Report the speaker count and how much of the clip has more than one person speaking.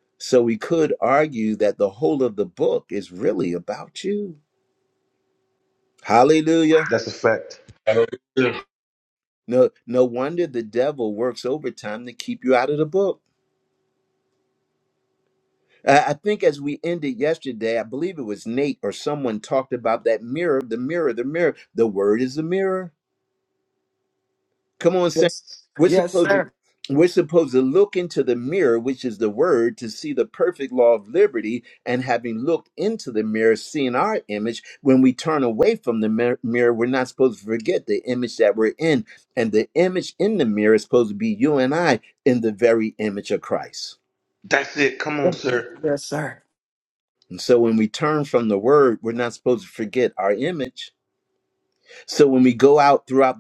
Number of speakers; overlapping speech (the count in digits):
3, about 1%